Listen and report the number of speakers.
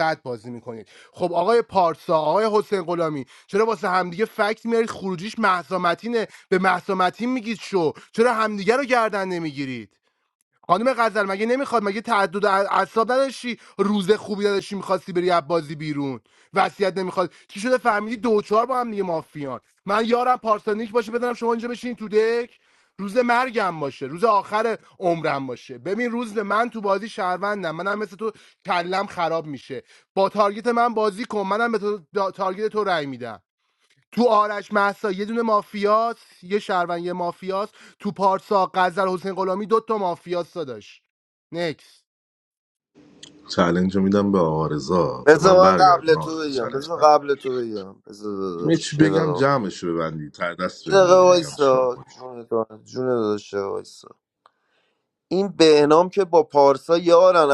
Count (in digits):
3